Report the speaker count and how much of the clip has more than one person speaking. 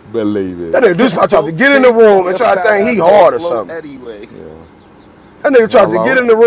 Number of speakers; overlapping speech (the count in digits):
3, about 50%